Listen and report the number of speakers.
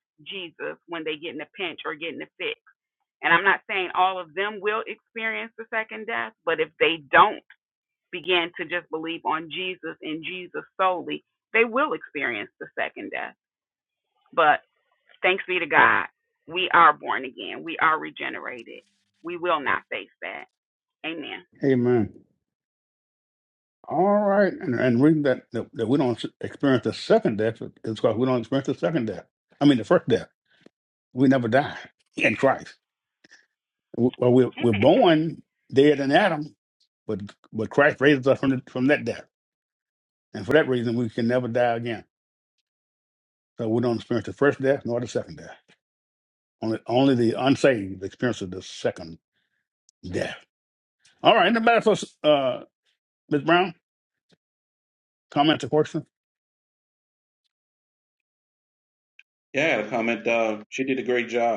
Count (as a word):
three